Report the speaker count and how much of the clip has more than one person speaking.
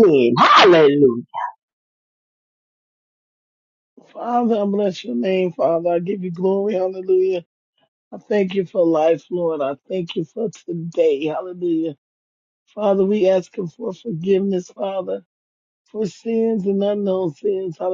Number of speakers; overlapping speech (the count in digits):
2, no overlap